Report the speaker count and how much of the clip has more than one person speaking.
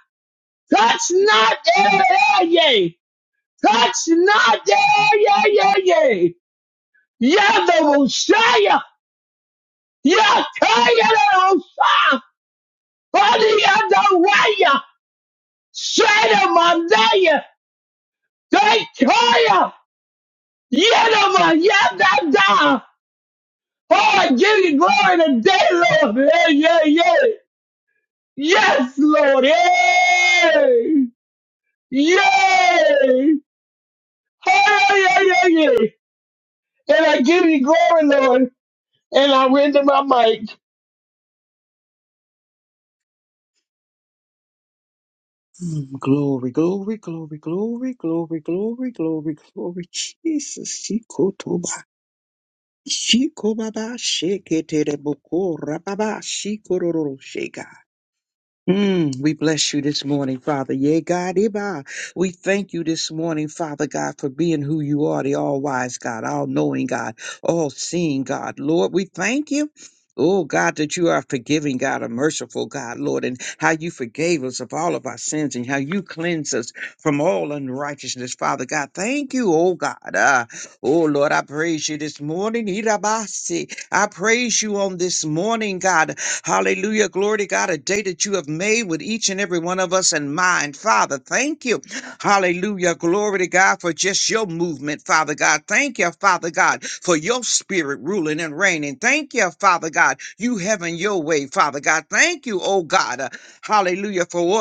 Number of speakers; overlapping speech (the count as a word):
two, no overlap